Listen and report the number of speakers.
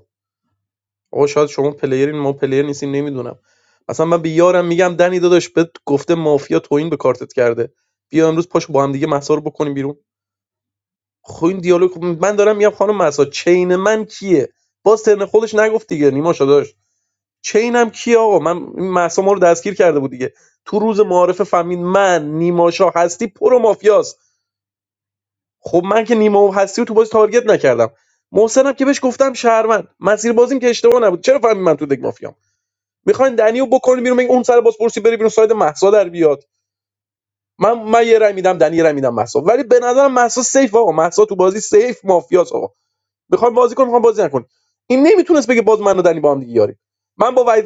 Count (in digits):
1